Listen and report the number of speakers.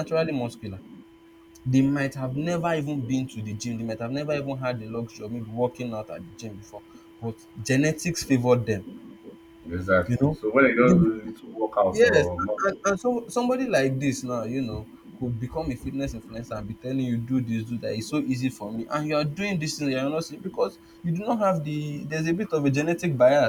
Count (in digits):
2